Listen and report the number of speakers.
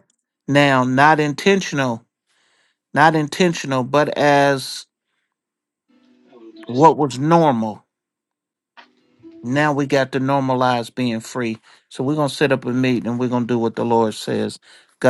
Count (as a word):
one